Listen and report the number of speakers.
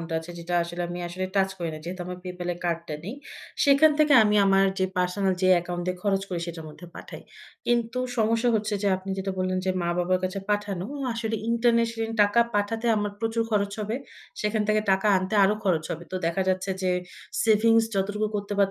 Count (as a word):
one